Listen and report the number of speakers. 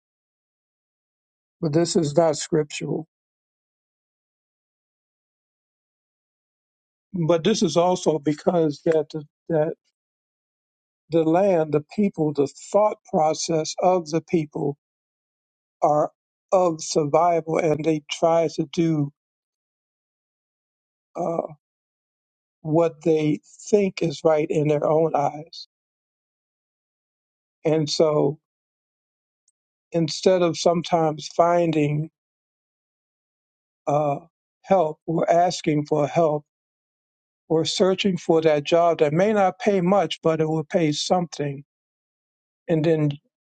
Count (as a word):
one